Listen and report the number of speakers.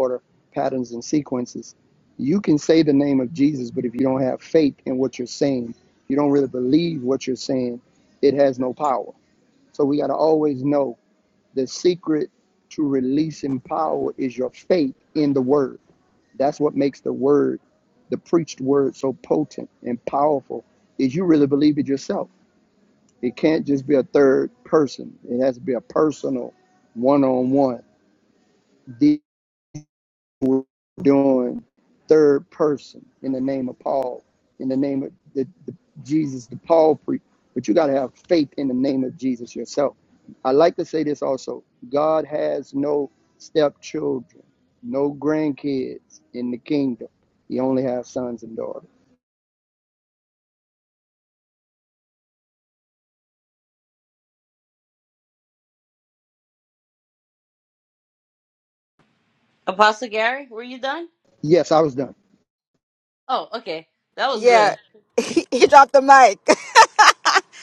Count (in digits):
3